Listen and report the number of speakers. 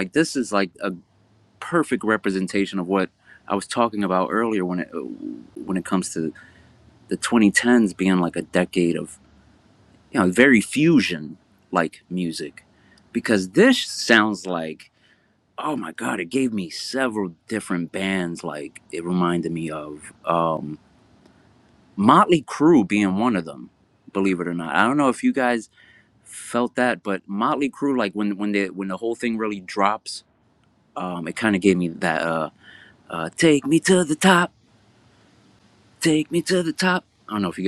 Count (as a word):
one